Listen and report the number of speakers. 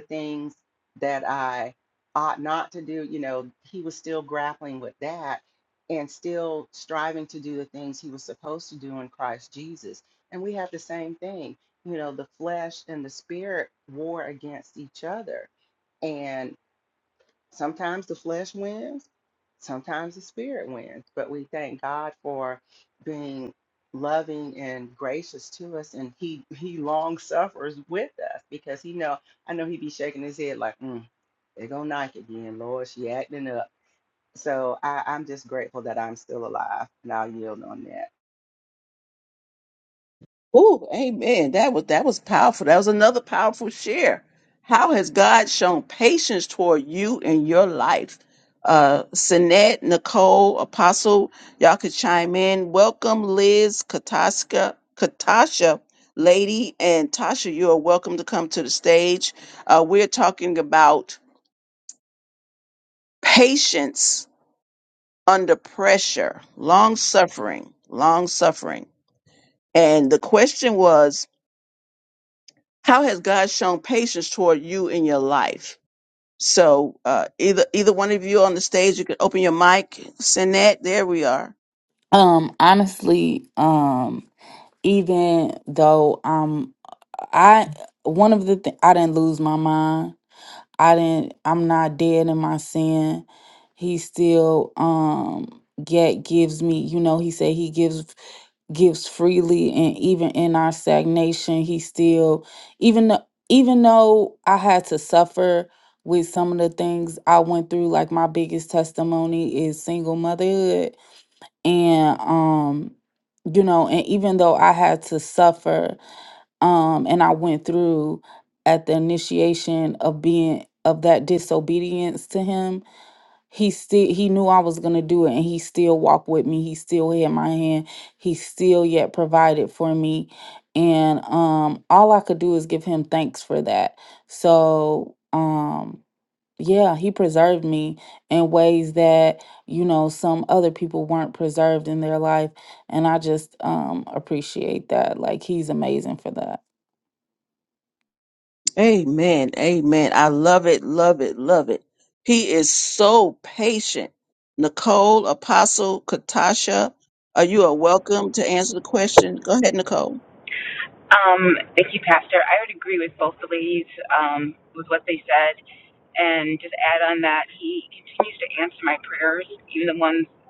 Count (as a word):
four